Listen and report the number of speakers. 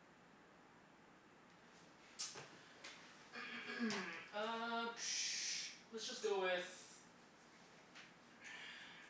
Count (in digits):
1